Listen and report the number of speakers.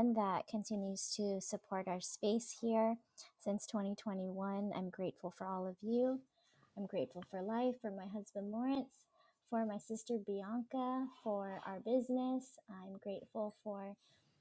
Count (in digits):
1